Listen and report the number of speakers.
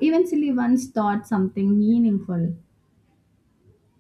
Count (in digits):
1